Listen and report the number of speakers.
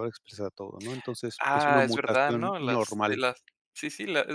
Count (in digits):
2